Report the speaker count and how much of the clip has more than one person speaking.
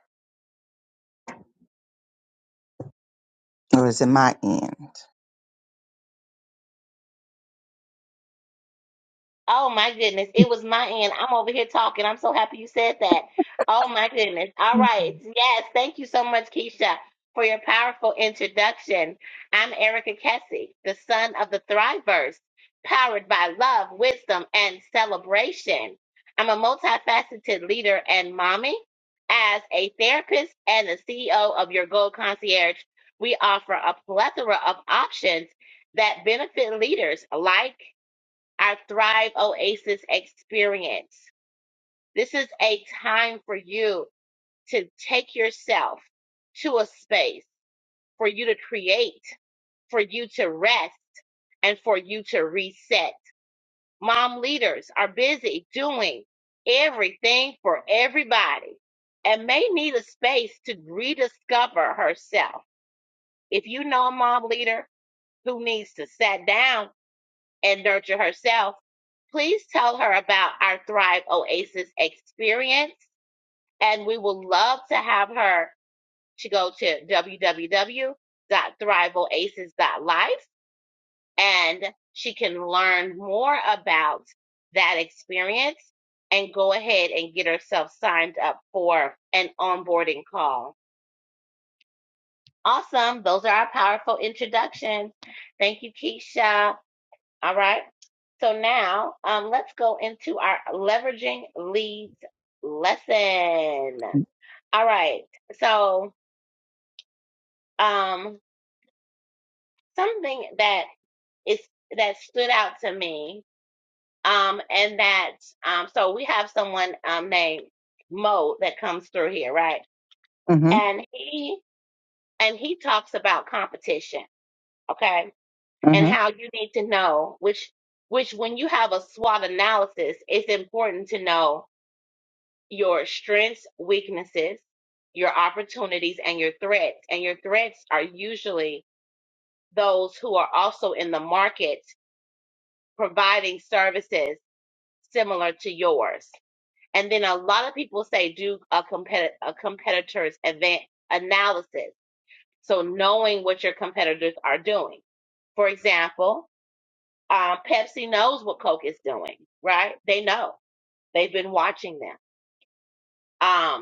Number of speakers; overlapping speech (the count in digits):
2, under 1%